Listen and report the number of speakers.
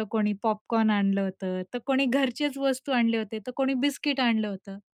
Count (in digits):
1